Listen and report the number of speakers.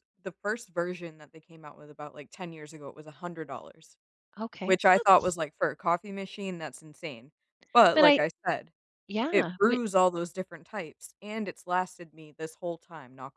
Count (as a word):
two